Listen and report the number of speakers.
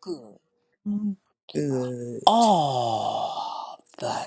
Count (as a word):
two